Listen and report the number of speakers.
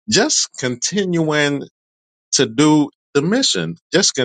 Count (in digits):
1